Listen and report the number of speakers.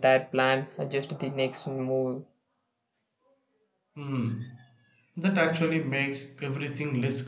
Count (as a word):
two